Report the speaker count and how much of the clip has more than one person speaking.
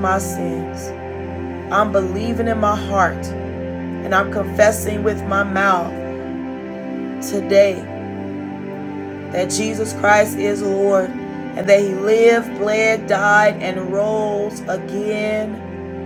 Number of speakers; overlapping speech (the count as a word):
one, no overlap